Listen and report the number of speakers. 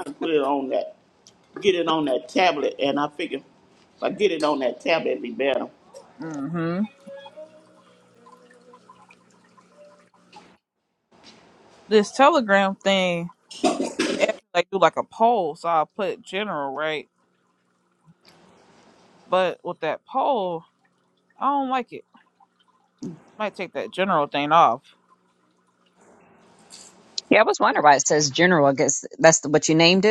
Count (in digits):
3